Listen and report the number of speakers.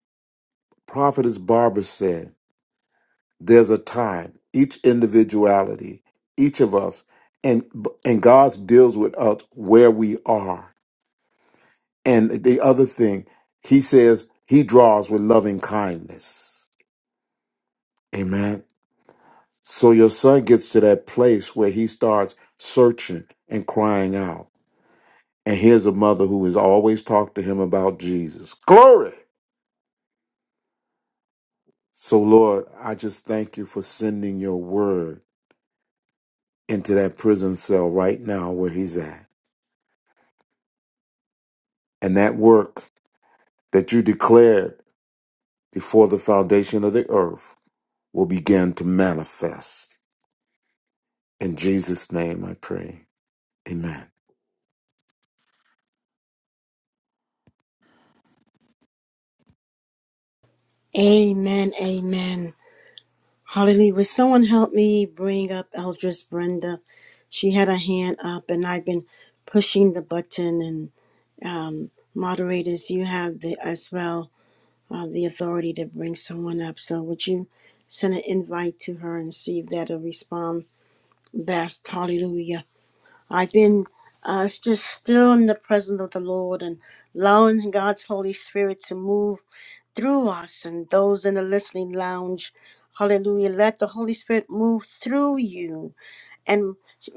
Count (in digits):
2